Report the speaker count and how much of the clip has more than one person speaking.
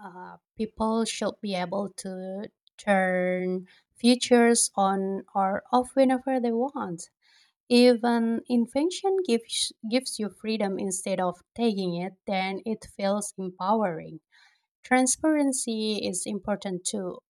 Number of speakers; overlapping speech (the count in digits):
1, no overlap